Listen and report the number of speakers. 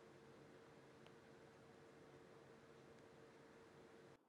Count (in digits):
0